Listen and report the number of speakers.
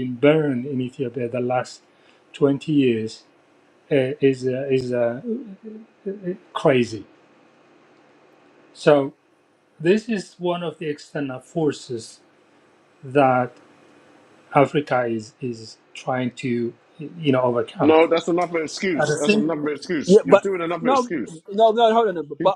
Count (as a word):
three